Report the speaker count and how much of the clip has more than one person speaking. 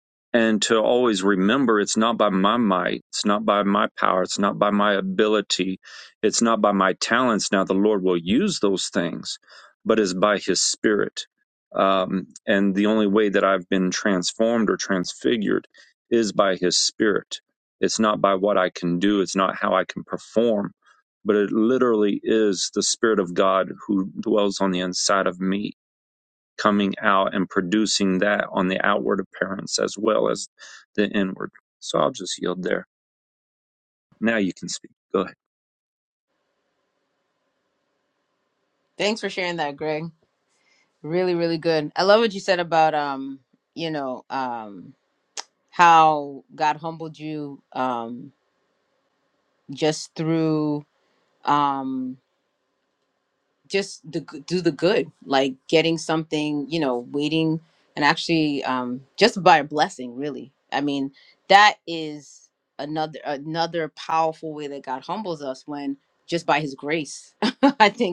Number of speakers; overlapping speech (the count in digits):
2, no overlap